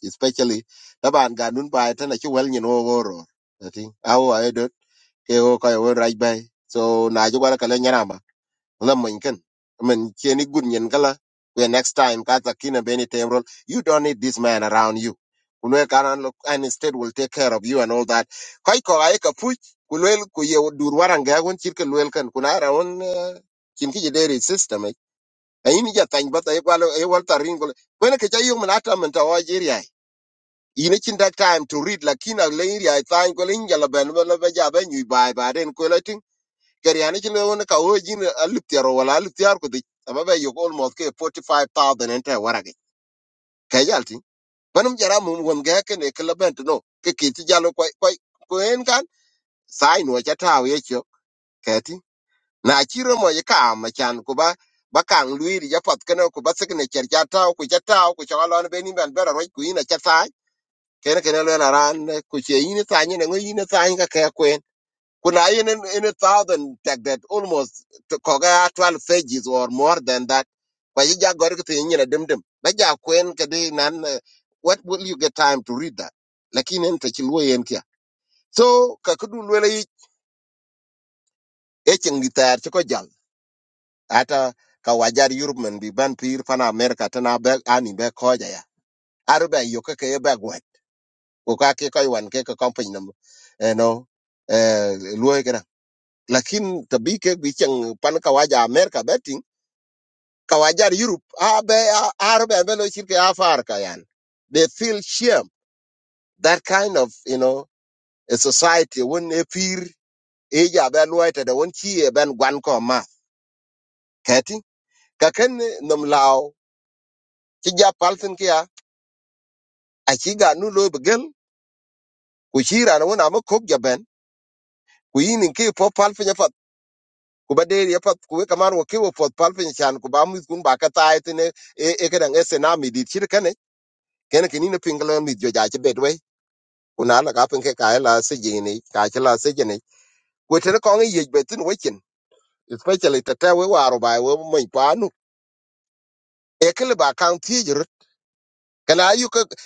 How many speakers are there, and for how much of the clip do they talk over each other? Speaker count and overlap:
one, no overlap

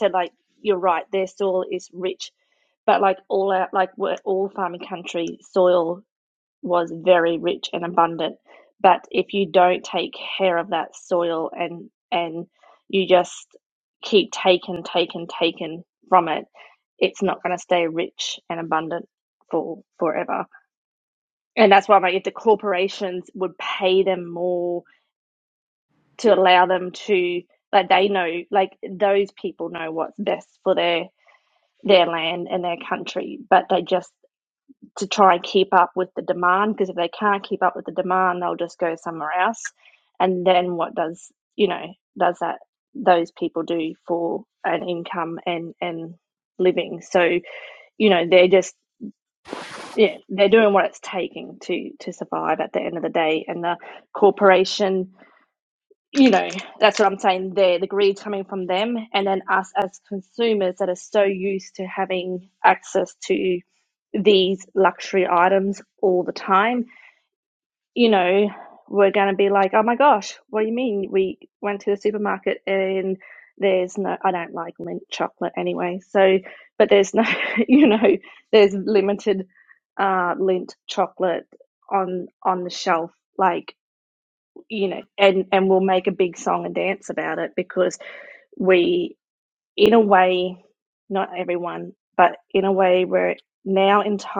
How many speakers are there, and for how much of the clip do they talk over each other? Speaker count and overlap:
one, no overlap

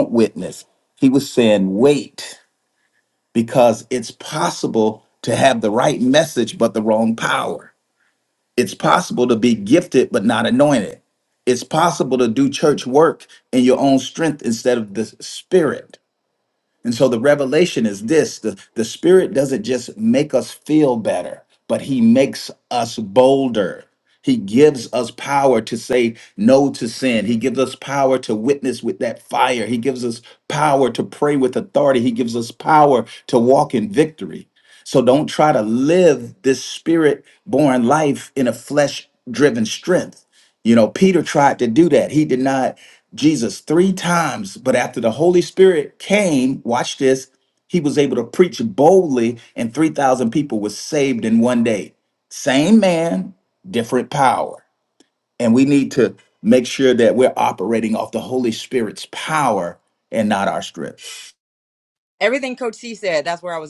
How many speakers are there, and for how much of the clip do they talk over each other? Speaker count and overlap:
two, no overlap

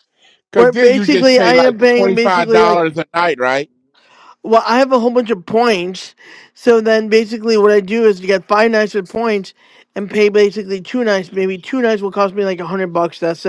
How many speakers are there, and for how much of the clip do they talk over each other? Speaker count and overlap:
two, about 16%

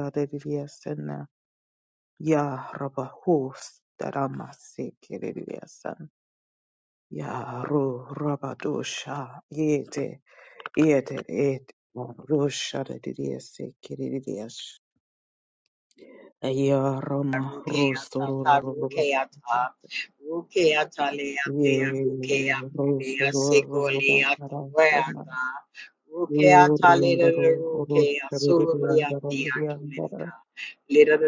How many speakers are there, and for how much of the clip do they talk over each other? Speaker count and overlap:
two, about 17%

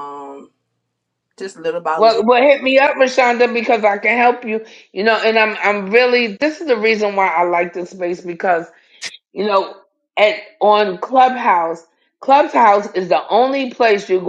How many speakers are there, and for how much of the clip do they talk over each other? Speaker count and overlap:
two, about 2%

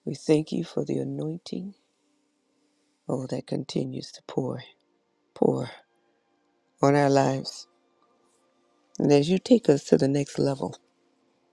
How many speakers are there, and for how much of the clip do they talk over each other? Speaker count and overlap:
one, no overlap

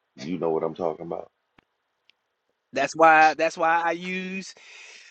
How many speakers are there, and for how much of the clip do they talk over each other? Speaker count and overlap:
two, no overlap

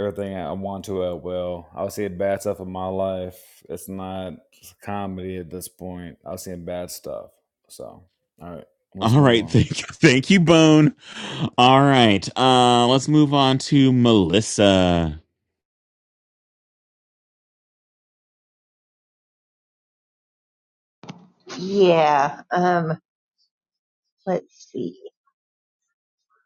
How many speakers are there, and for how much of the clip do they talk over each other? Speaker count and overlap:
three, about 2%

